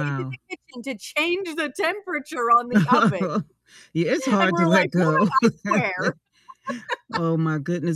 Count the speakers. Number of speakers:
2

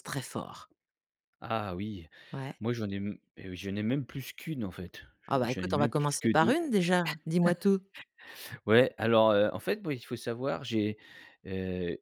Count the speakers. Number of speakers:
2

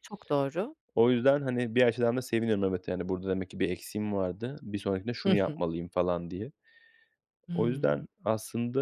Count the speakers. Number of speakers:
2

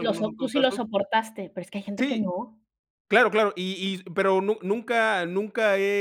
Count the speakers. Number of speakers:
2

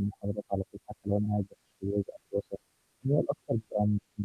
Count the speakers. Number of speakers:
1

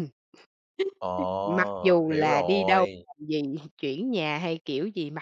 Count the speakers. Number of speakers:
2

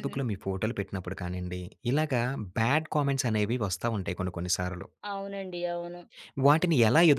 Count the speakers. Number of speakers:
2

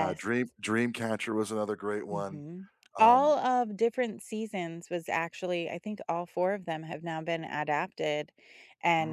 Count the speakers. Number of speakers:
2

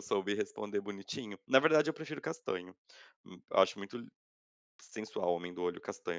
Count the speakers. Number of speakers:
1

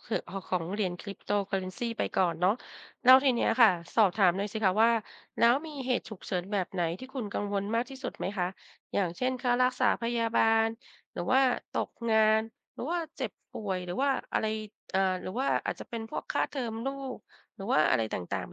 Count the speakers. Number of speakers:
1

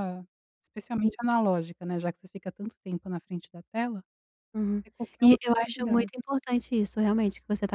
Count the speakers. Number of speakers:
2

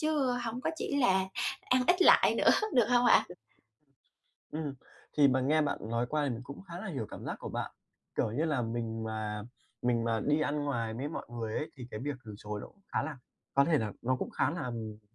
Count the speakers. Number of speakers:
2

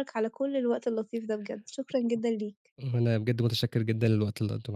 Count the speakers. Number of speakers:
2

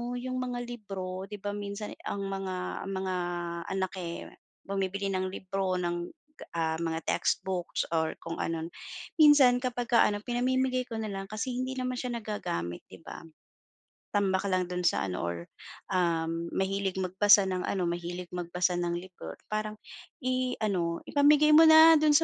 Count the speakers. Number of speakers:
1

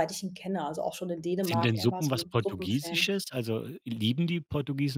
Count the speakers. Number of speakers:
2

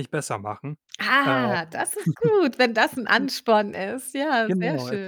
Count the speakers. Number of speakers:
2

